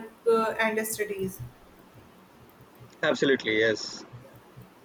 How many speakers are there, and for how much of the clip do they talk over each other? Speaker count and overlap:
2, no overlap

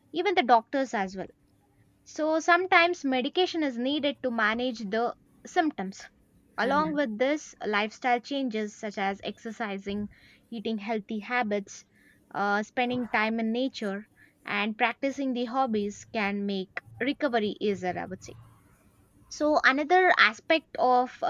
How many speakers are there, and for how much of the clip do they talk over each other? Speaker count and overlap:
1, no overlap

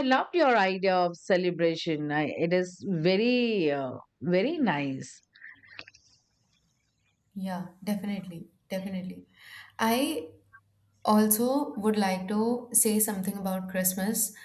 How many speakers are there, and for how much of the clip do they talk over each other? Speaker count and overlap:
2, no overlap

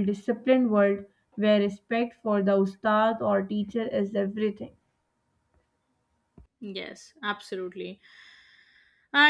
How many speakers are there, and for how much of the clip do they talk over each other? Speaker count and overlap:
2, no overlap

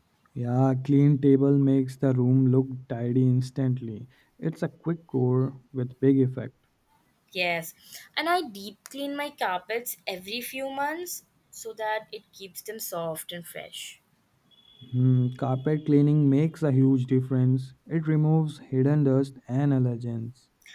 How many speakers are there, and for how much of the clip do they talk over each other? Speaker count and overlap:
2, no overlap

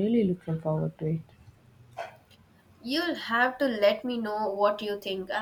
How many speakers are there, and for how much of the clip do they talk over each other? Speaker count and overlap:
2, no overlap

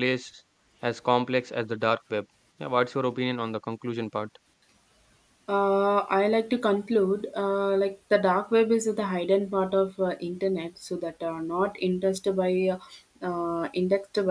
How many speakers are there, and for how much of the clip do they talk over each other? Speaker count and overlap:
2, no overlap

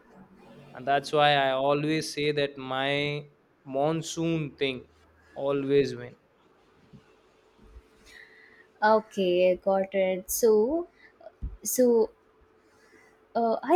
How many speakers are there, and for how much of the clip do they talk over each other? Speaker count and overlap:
2, no overlap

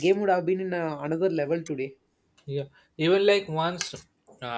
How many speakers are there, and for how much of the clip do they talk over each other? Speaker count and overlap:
2, no overlap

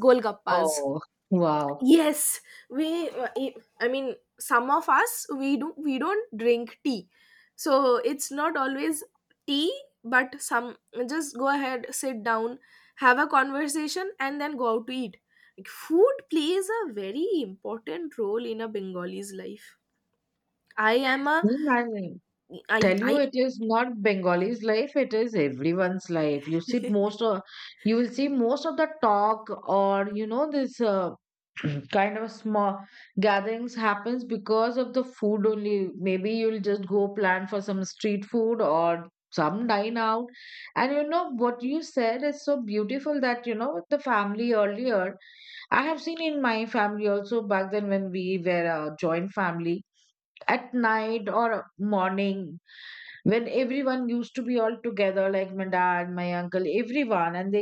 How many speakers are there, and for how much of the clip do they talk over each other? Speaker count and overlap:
2, about 2%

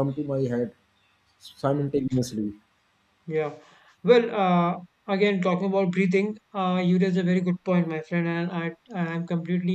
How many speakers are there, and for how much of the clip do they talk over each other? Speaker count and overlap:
2, about 2%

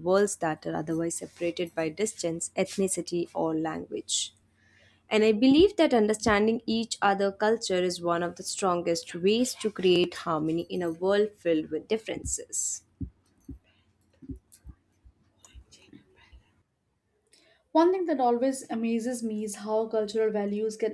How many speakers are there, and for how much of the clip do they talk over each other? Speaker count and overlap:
2, no overlap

